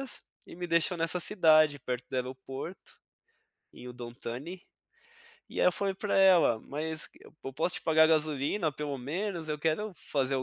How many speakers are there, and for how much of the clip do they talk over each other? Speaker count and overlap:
1, no overlap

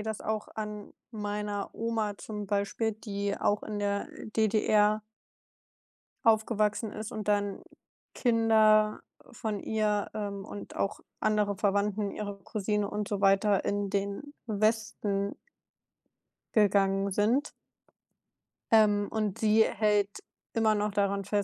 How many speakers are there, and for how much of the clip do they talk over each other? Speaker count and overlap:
1, no overlap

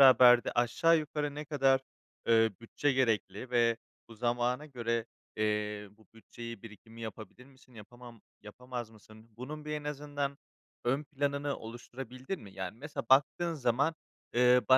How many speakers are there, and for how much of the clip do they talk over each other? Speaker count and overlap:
1, no overlap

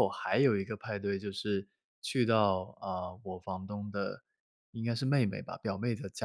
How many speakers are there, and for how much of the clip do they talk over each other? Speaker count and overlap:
1, no overlap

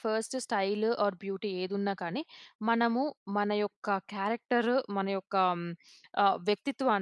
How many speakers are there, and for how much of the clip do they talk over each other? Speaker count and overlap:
1, no overlap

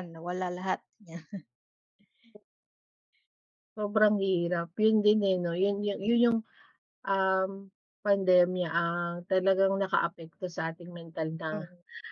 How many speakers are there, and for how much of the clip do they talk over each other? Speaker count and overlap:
2, no overlap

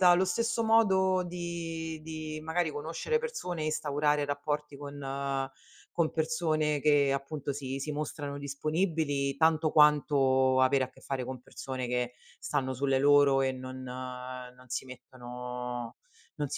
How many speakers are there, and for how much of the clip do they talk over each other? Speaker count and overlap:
1, no overlap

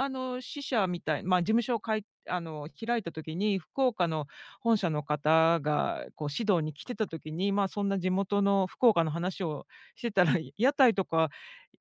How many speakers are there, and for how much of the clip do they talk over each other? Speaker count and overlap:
1, no overlap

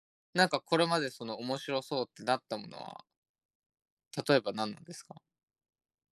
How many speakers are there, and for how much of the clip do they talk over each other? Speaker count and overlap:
1, no overlap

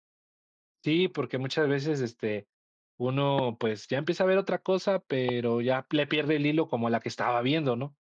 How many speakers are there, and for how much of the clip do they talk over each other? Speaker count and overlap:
1, no overlap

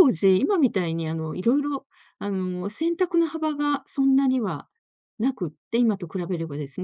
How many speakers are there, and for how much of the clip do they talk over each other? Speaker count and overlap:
1, no overlap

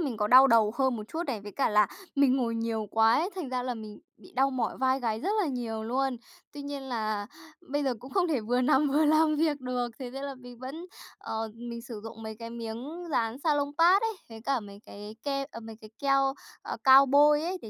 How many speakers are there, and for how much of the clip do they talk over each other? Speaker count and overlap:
1, no overlap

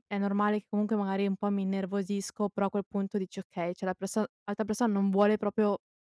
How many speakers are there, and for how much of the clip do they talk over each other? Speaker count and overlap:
1, no overlap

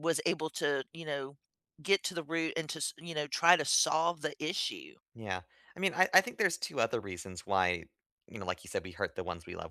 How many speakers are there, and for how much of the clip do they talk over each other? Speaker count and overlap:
2, no overlap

